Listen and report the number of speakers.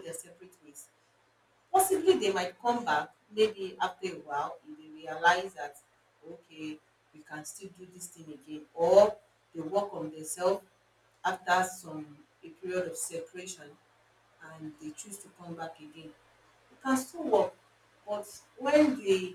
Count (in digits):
1